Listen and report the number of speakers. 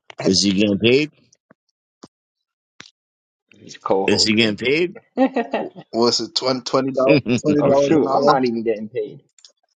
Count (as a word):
three